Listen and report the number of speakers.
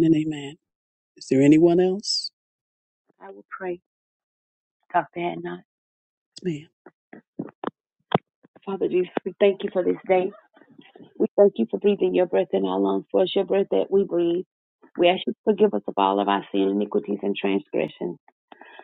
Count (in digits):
2